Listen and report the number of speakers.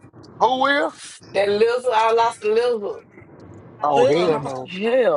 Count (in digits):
3